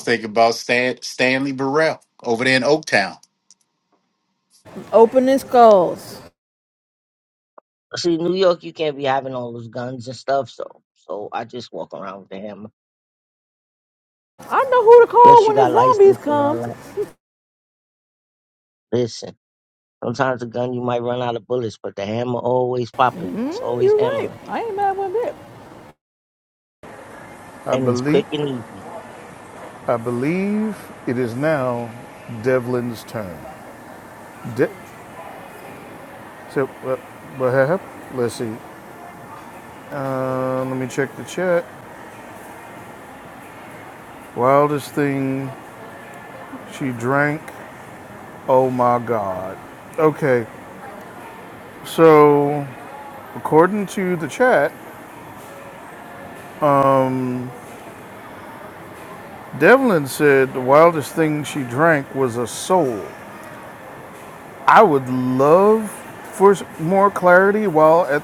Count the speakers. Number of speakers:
4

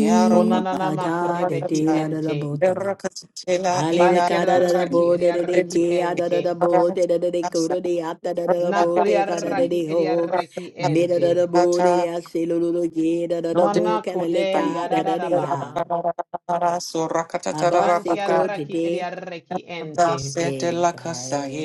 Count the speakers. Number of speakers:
3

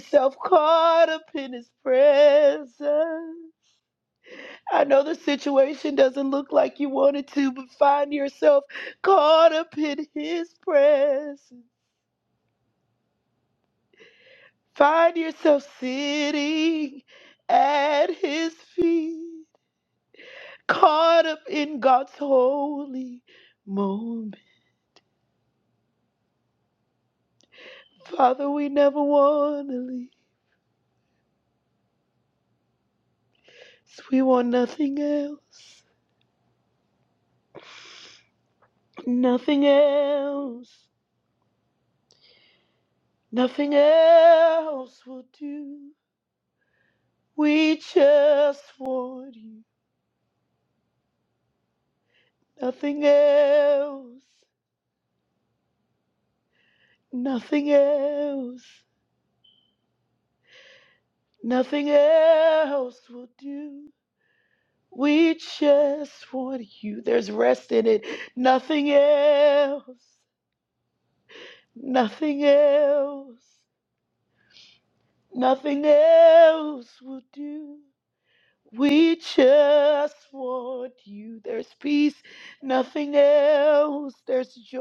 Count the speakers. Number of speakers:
1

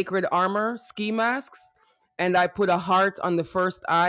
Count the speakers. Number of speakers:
1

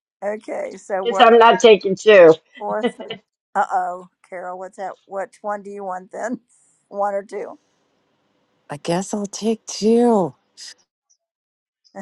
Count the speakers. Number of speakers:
3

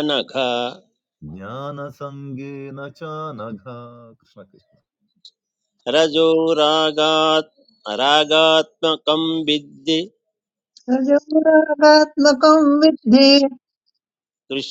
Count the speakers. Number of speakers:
3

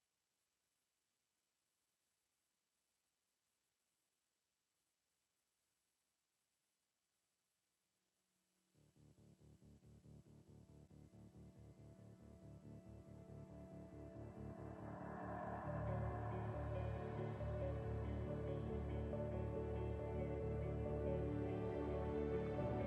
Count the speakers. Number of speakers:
0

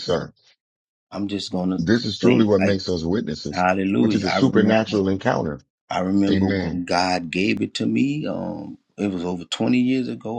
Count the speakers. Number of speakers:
2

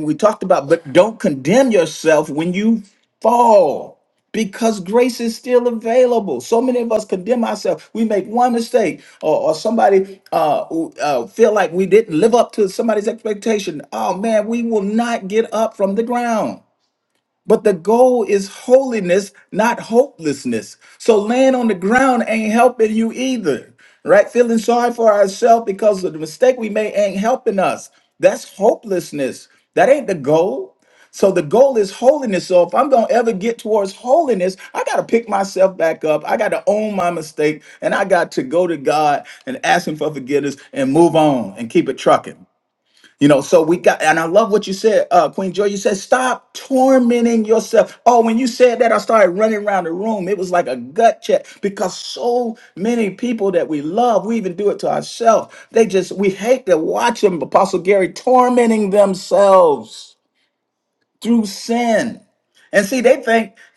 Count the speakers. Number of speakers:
1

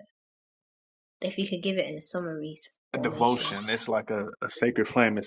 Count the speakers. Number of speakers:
2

